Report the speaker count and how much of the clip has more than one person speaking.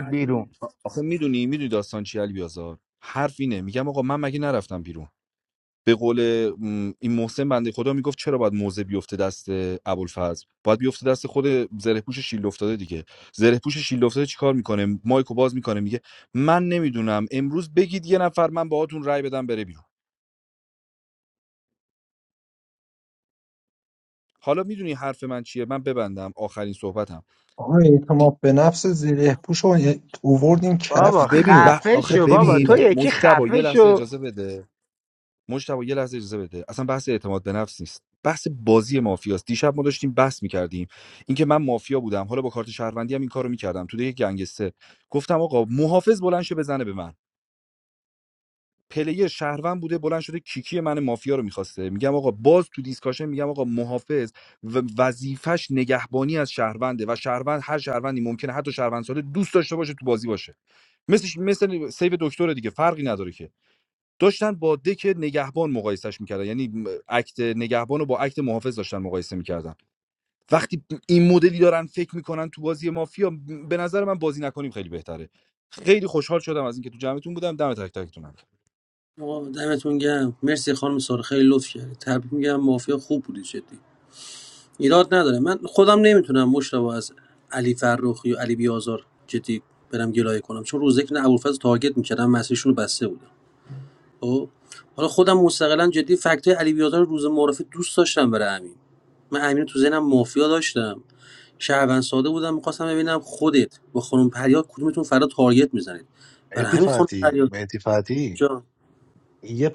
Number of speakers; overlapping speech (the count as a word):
five, about 4%